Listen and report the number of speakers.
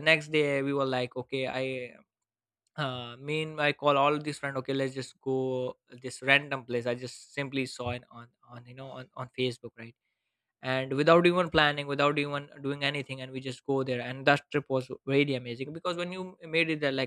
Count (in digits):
1